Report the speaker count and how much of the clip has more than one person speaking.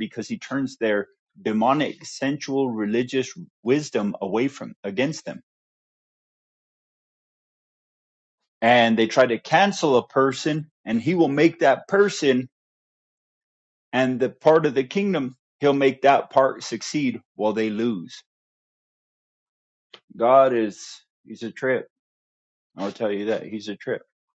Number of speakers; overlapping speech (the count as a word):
one, no overlap